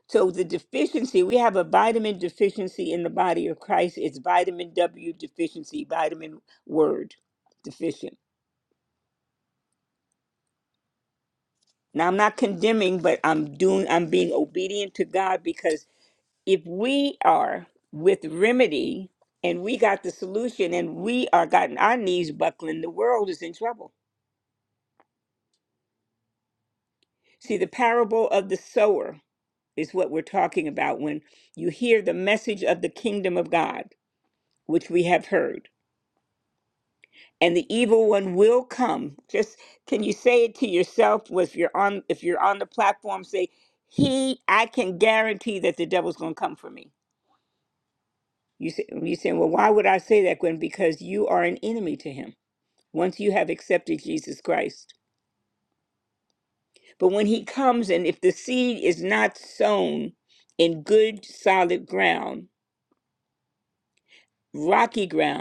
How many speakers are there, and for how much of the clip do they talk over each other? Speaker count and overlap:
1, no overlap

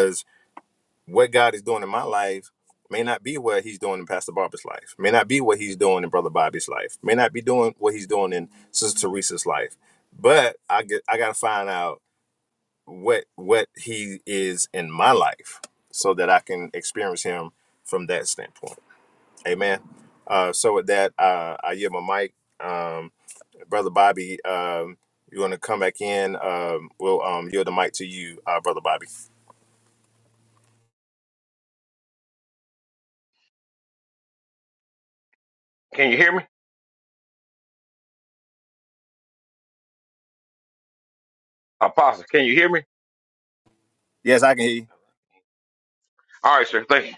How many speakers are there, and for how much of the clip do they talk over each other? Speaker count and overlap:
2, no overlap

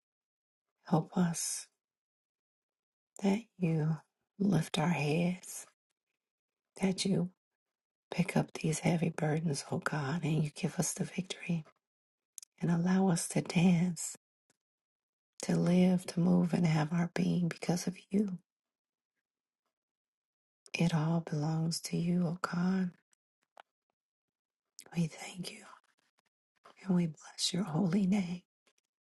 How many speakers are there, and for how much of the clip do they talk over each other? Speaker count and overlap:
1, no overlap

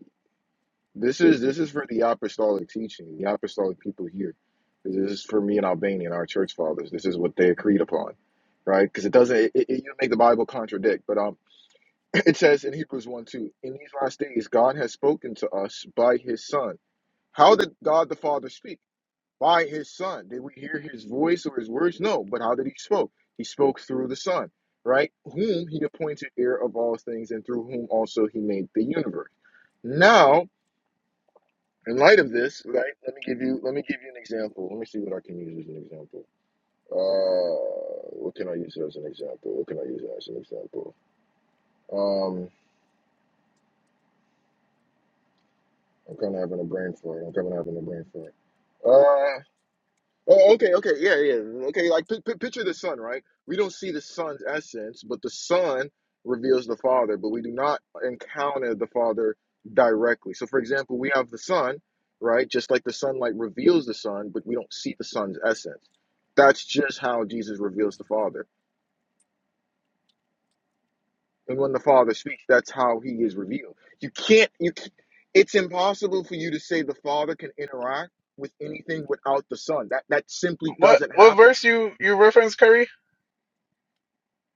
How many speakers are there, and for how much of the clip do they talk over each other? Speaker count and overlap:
2, about 1%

